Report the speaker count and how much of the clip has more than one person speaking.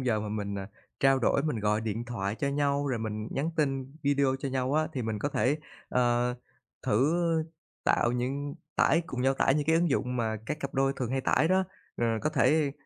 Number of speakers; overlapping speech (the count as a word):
one, no overlap